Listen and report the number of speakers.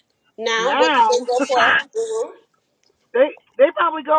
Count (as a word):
two